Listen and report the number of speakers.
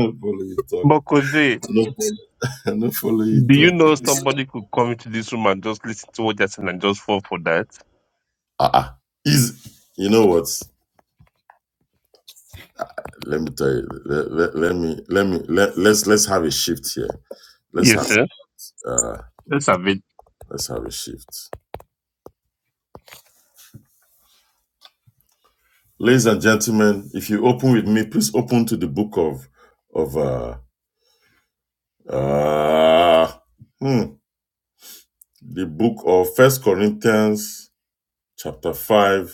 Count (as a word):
two